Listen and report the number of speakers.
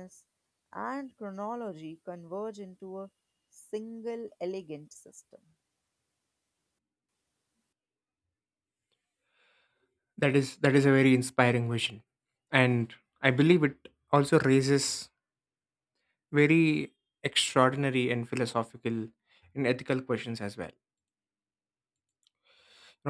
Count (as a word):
two